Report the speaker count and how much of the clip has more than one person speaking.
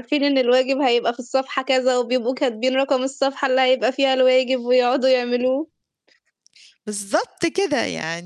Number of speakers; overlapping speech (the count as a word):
two, no overlap